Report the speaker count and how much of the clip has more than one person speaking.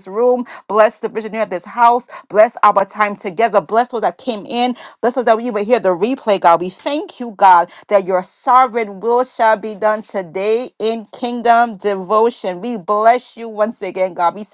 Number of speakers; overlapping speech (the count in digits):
1, no overlap